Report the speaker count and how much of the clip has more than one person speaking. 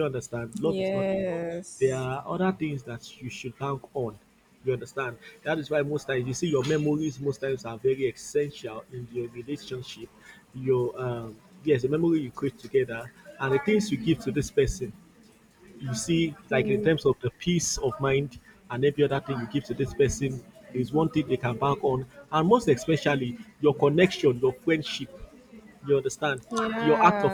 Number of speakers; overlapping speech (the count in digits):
2, about 6%